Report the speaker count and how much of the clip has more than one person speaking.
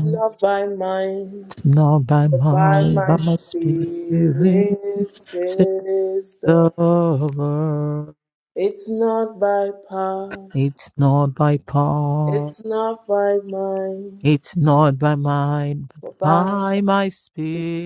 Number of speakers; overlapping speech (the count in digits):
2, about 18%